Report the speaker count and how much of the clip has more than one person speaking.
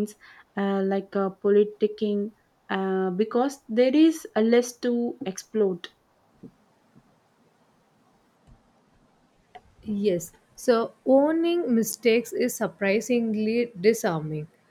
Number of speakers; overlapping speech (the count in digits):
2, no overlap